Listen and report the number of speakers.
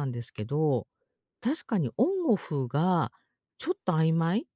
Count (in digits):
1